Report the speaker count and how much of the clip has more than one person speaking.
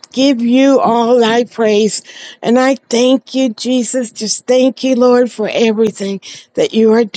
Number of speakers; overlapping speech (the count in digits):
1, no overlap